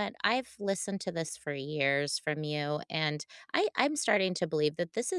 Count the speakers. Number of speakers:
1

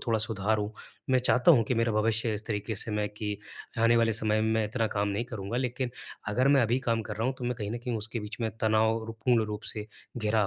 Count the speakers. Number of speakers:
1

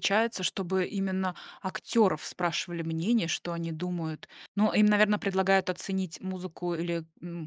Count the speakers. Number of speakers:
1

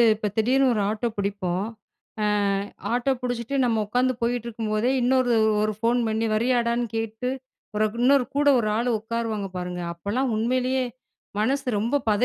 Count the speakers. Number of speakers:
1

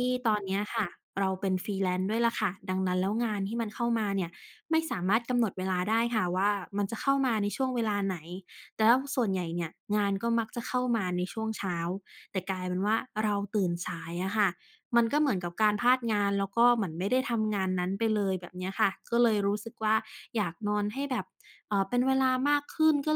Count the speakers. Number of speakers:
1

